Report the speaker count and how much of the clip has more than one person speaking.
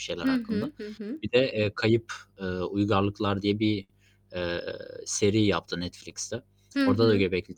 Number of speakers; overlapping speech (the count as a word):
two, about 11%